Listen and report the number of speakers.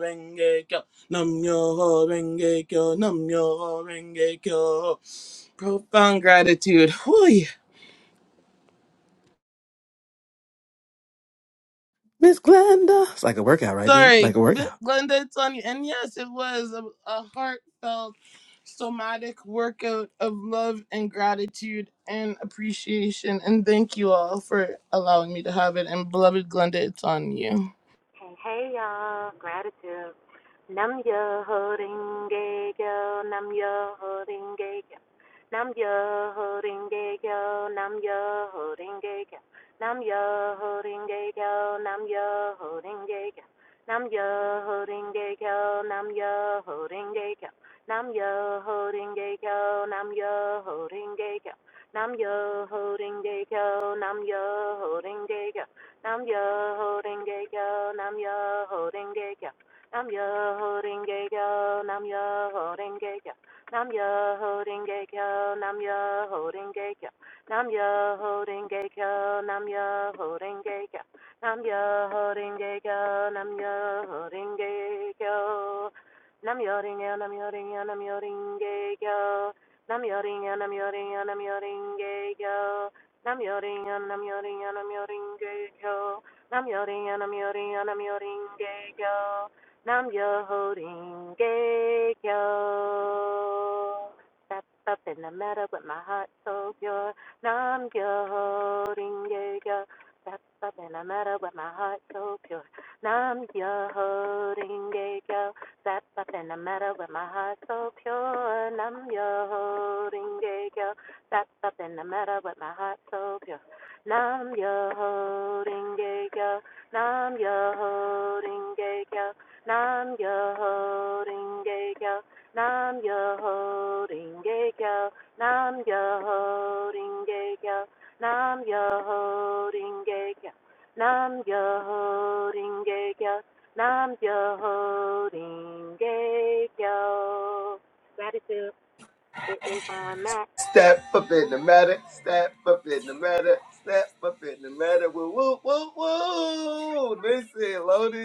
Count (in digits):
4